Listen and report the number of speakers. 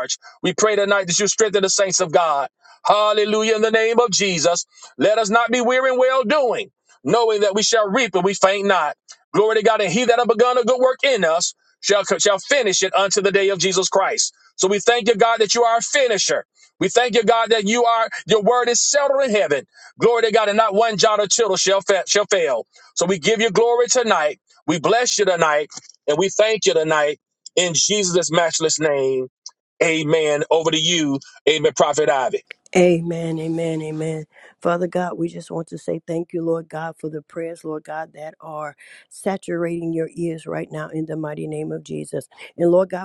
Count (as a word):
two